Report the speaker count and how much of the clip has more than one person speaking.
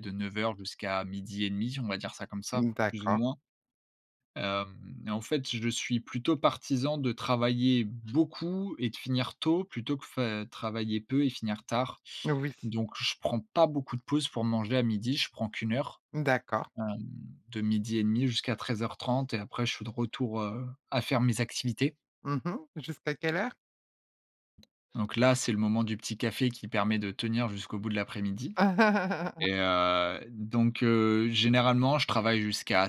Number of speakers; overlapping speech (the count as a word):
two, about 2%